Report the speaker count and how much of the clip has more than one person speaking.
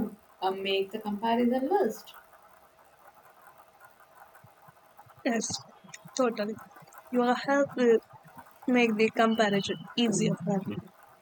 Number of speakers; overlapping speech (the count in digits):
2, no overlap